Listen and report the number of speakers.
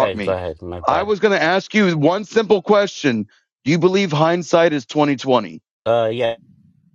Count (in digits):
2